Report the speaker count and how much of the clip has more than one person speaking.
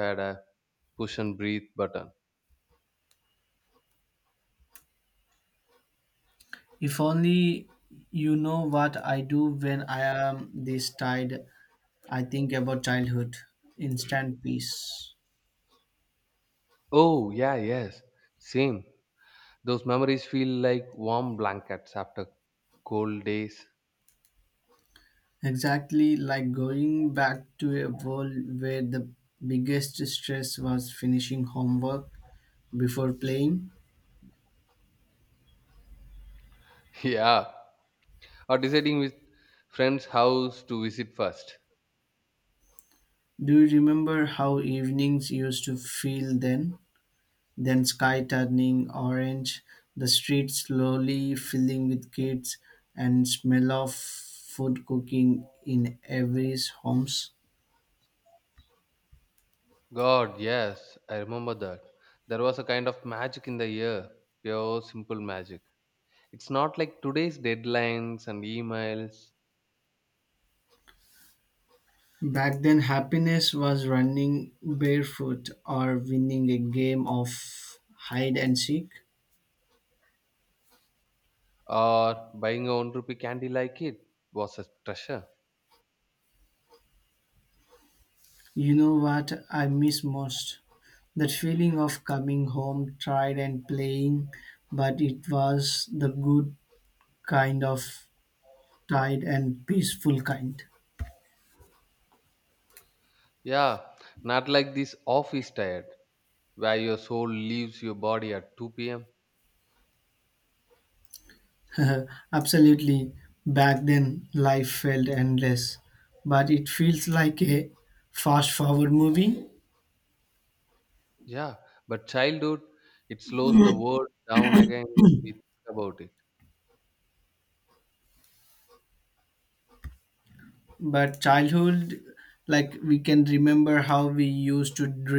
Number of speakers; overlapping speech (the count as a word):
two, no overlap